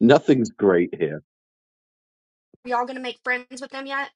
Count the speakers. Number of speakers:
2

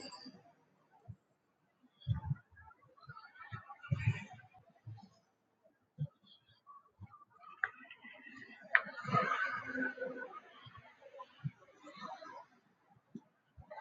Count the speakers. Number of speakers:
0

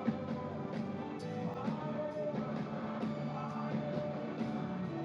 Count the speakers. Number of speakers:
0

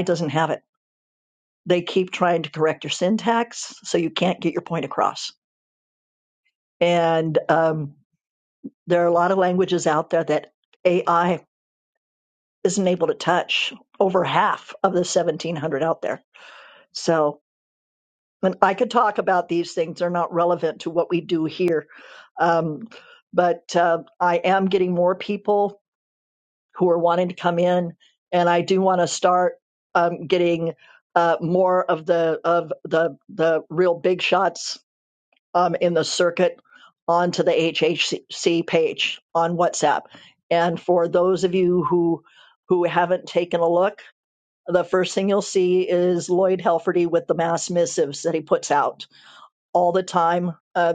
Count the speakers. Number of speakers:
1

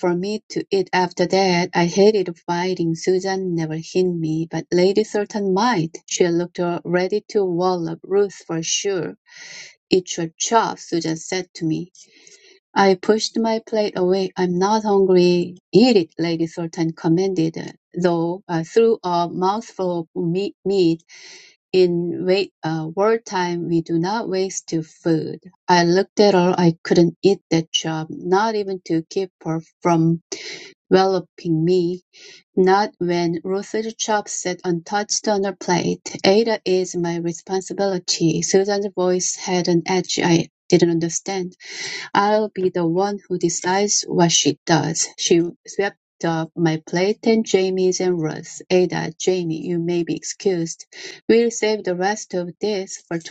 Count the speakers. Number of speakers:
1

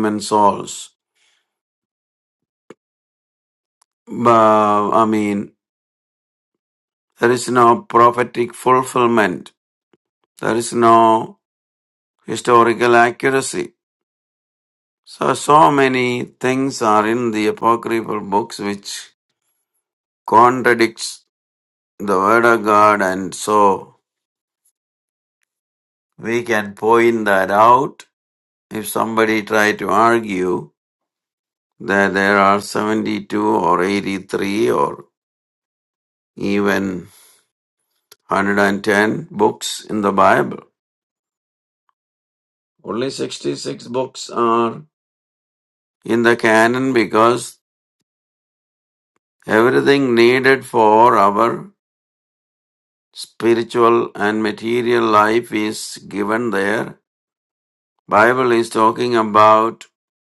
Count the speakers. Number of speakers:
1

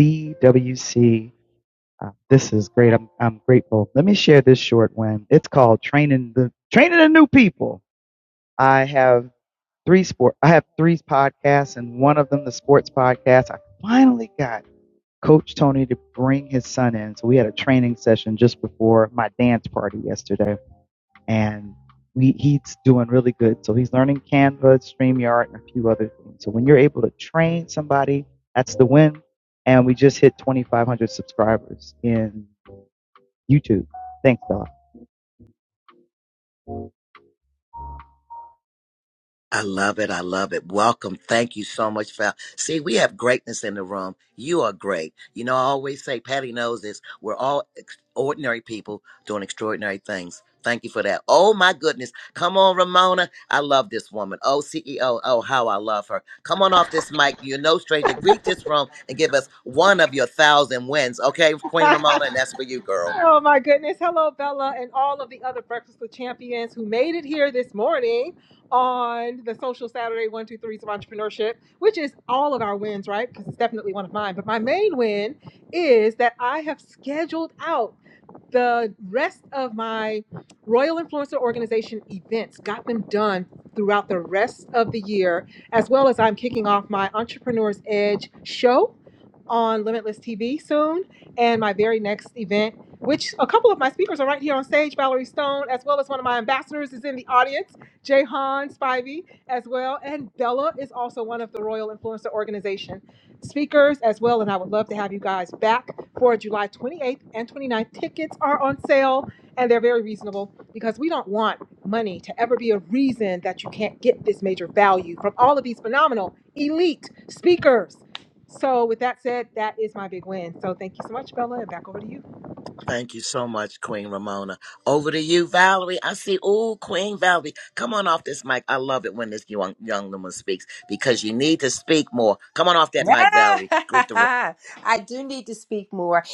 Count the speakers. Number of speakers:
4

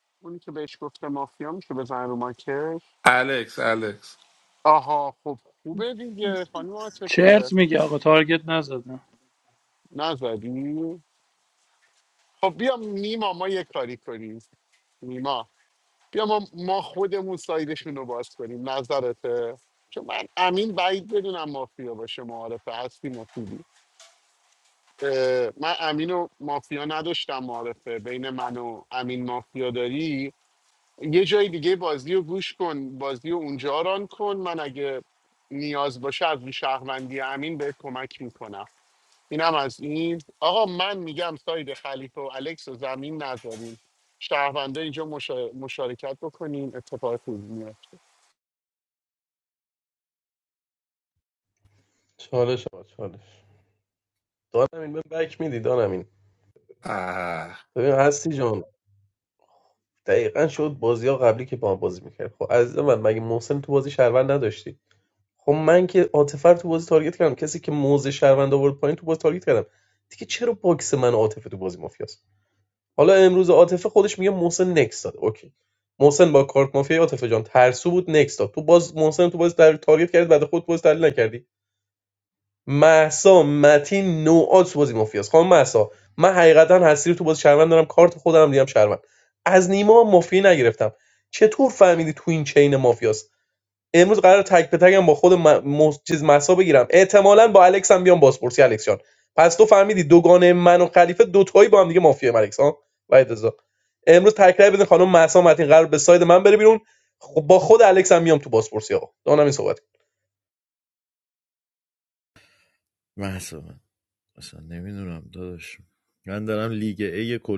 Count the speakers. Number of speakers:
5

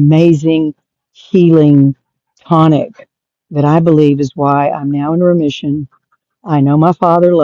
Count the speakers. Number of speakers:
1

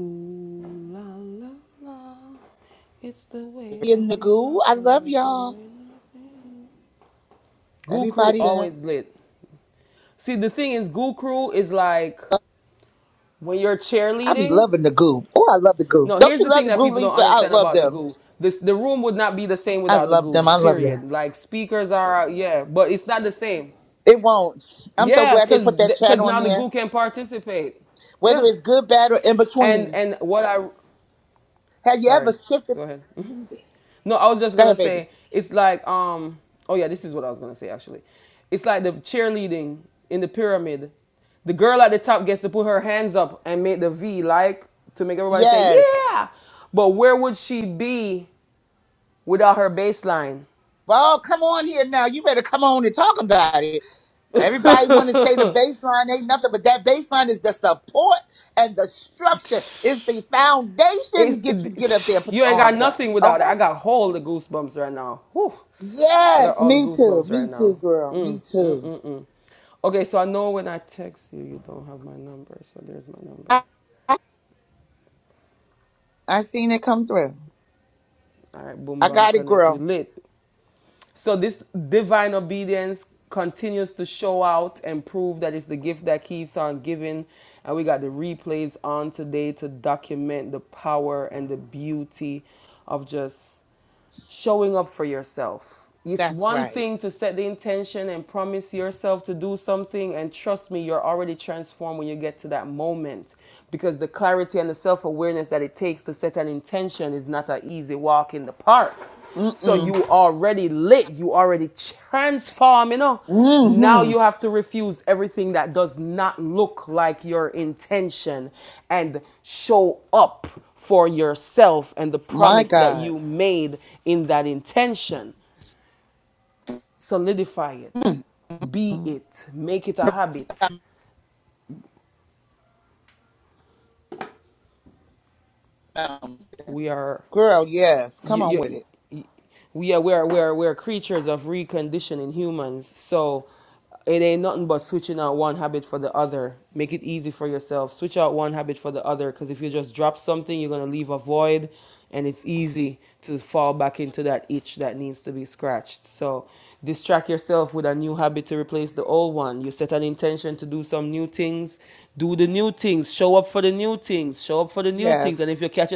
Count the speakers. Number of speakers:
2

